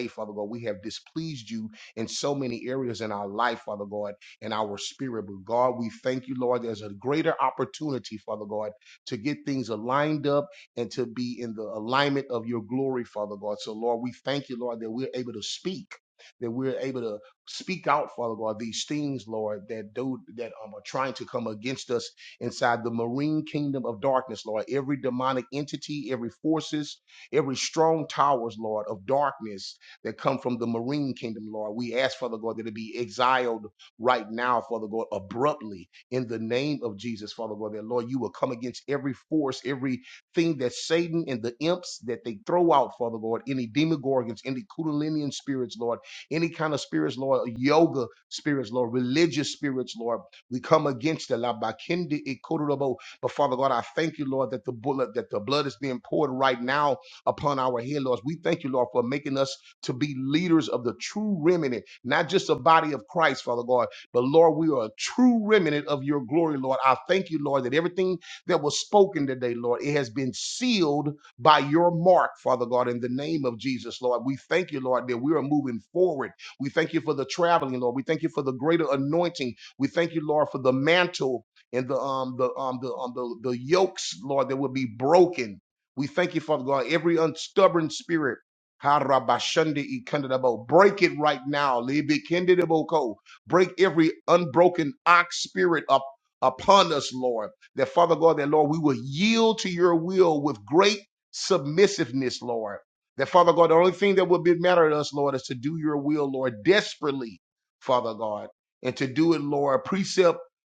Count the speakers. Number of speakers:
1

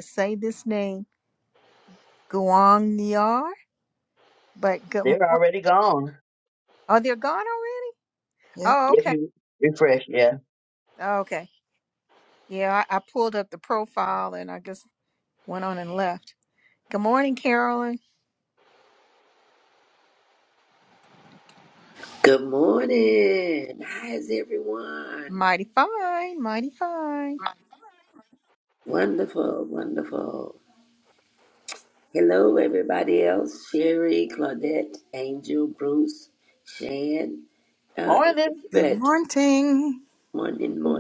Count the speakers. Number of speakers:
4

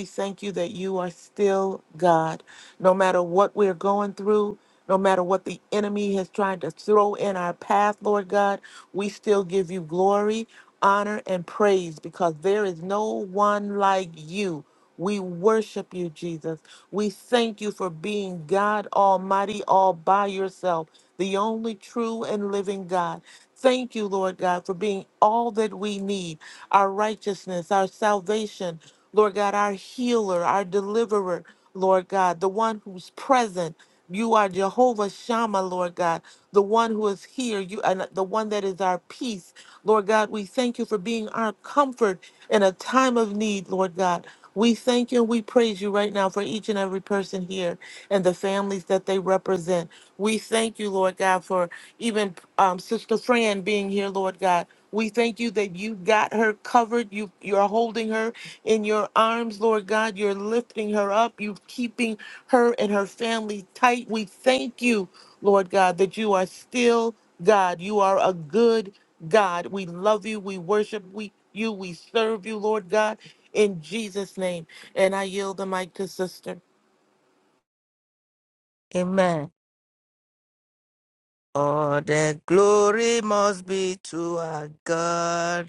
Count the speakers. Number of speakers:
2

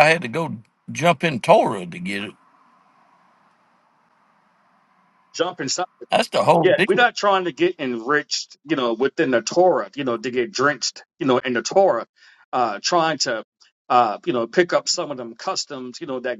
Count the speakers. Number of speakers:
2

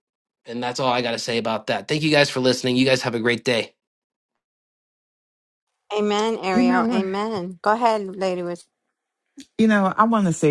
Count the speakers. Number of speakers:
3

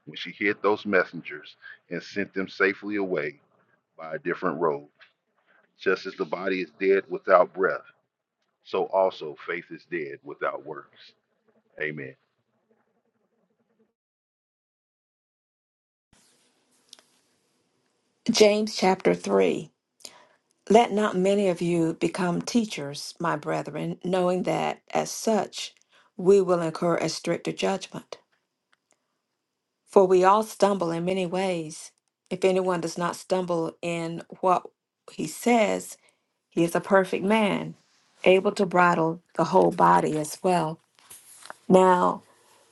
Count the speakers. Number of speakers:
2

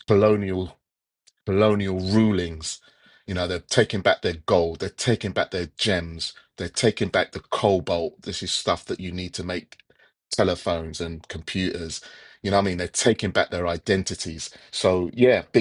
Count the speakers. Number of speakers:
1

